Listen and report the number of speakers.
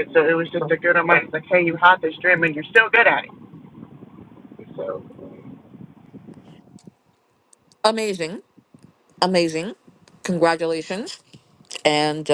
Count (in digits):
2